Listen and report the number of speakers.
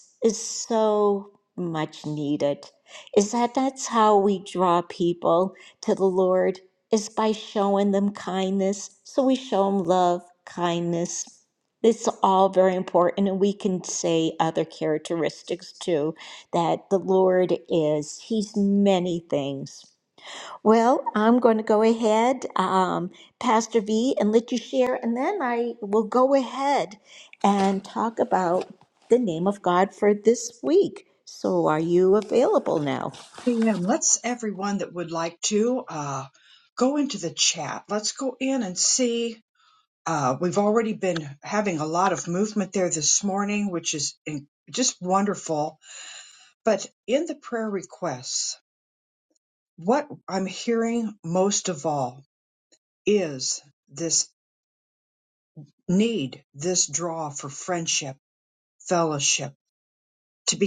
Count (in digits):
2